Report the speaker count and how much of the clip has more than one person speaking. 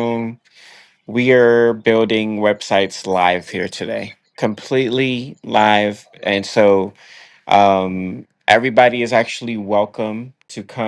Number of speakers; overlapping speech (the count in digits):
1, no overlap